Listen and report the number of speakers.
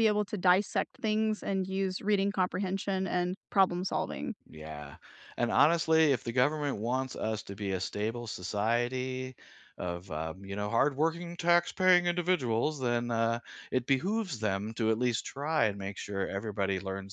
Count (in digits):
2